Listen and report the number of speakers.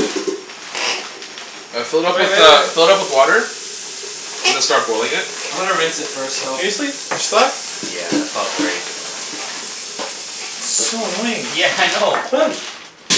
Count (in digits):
4